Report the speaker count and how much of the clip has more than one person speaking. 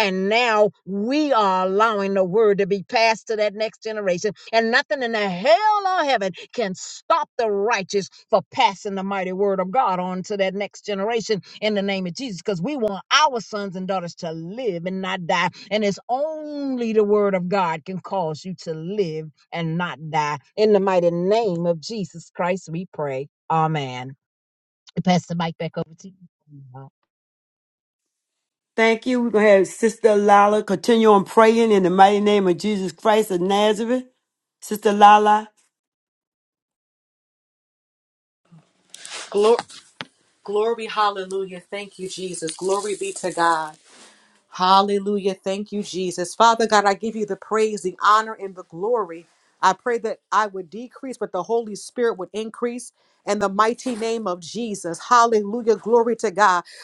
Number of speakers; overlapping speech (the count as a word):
three, no overlap